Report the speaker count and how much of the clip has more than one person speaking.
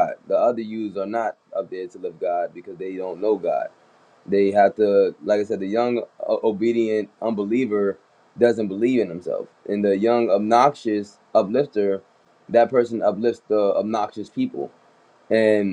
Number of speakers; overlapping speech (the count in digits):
1, no overlap